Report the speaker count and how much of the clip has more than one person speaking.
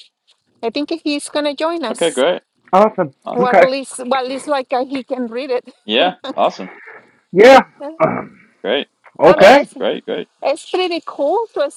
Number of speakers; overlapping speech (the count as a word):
three, about 10%